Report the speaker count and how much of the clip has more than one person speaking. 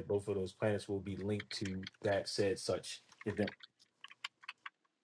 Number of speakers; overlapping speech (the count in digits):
1, no overlap